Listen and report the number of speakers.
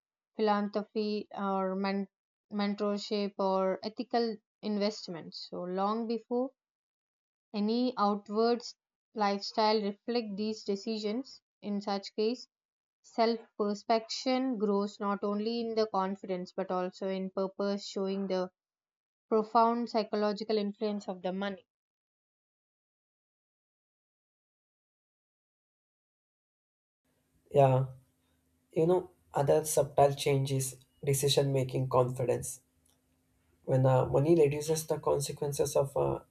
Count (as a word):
two